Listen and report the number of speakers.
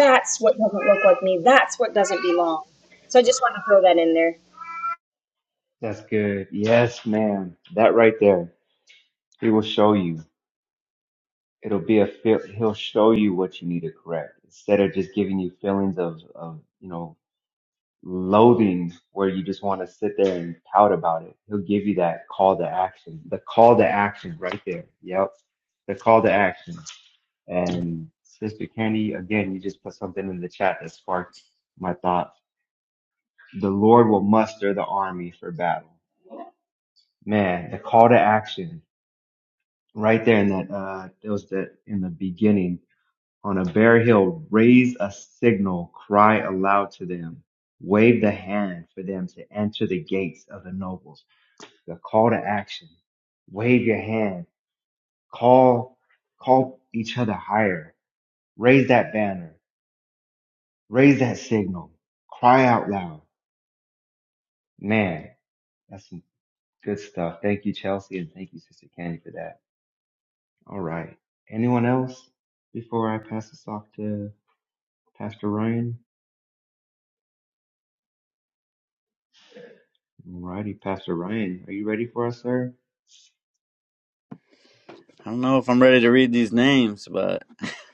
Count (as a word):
three